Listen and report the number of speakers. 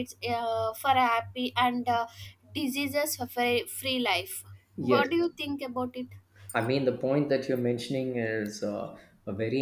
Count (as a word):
two